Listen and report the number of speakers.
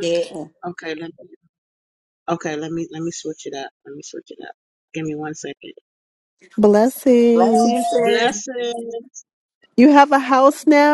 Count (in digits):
3